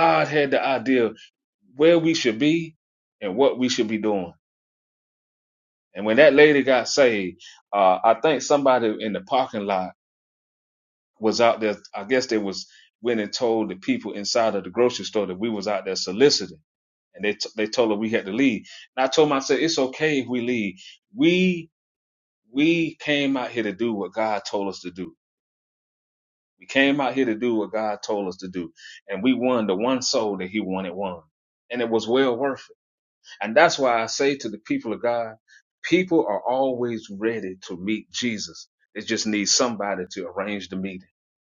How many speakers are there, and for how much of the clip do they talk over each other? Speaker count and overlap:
1, no overlap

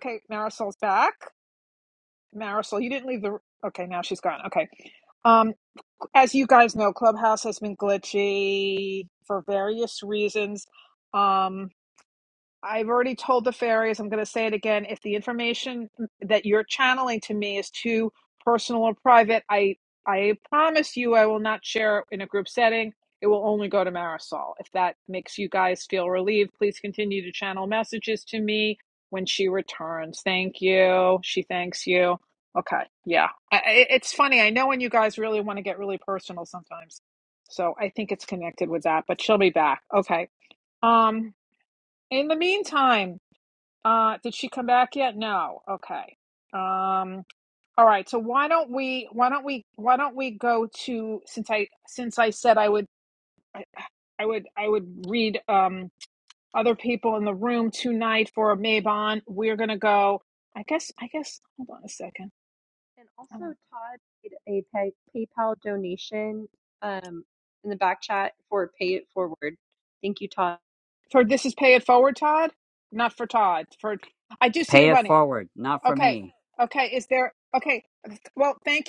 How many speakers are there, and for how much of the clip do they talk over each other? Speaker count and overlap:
3, about 1%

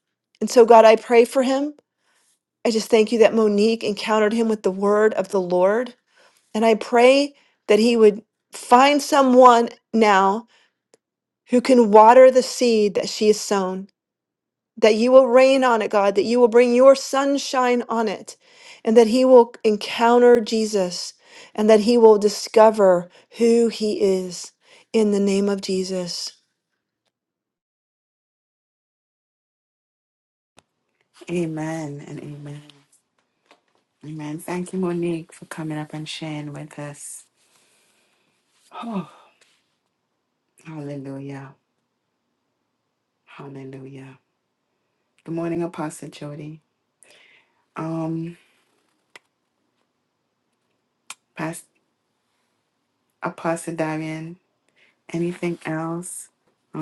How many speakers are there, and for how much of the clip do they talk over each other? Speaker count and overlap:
2, no overlap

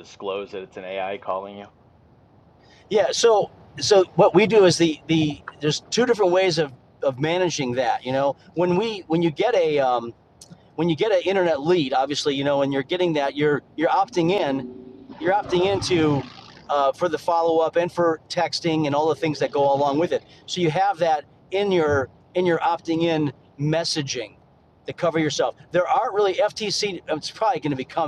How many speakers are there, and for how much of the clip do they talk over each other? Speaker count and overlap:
2, no overlap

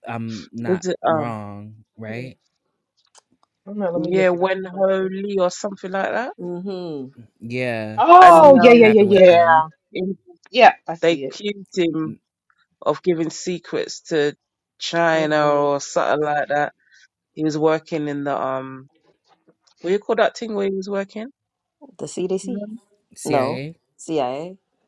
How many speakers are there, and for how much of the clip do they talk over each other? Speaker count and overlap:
4, about 16%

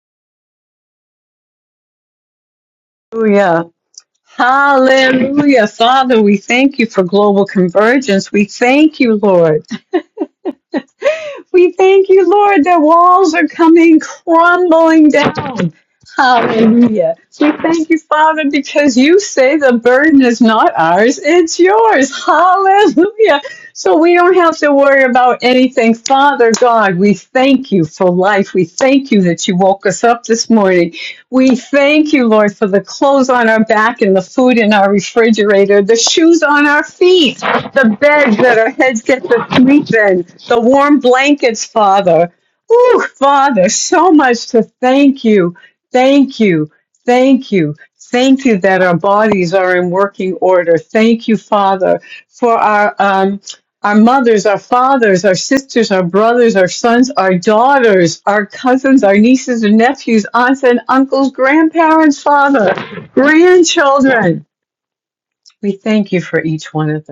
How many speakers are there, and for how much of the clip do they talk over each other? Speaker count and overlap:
1, no overlap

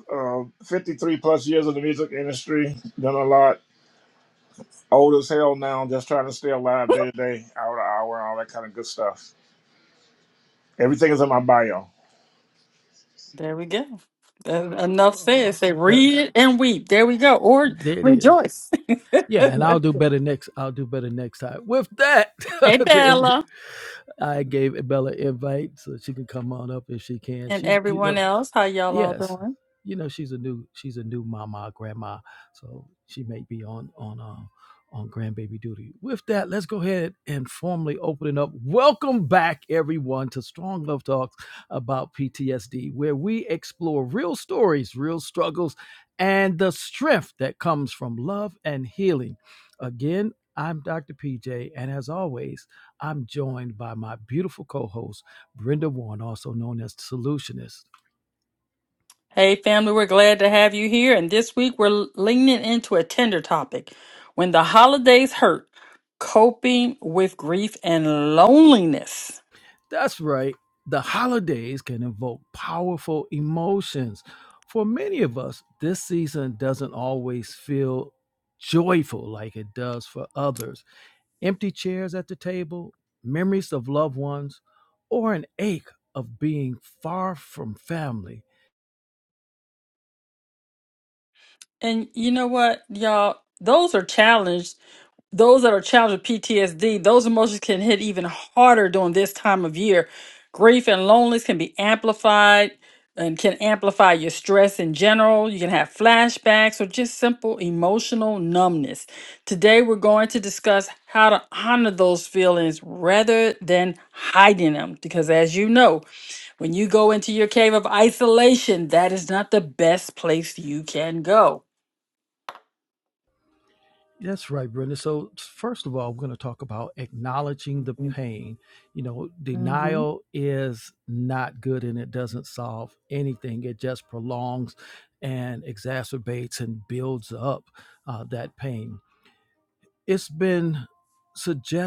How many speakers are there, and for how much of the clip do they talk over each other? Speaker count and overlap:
3, about 3%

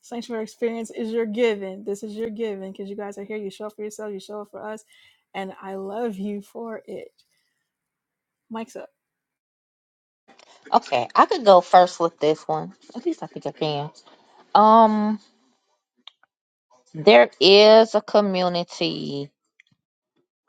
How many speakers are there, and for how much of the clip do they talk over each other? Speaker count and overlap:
2, no overlap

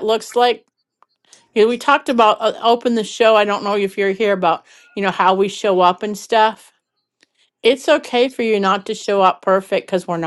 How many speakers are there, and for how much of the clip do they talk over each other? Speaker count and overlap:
1, no overlap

